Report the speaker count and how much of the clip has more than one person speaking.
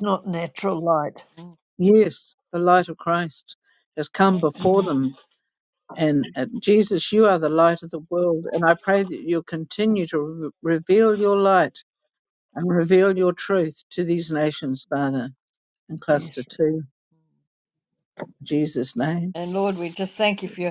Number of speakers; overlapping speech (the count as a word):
three, about 4%